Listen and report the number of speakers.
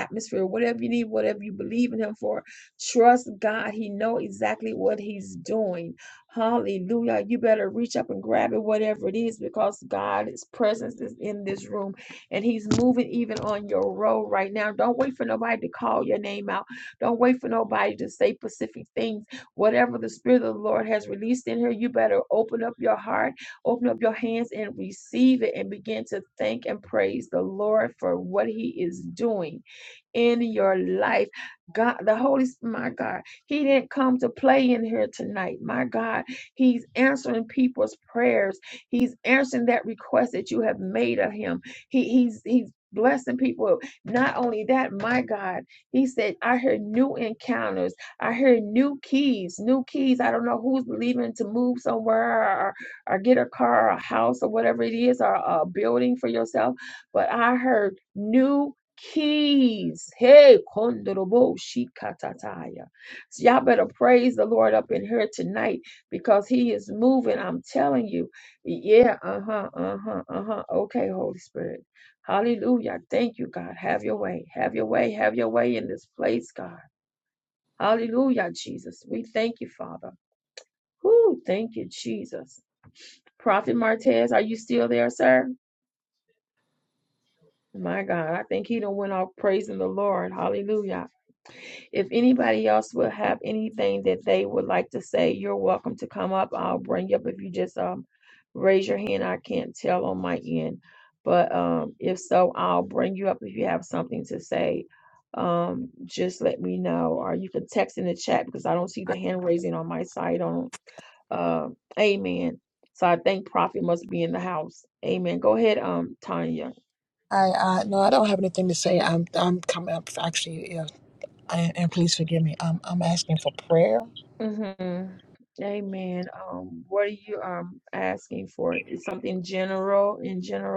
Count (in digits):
2